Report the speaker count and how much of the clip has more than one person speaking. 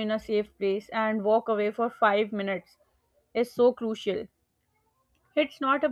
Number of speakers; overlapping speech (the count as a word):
one, no overlap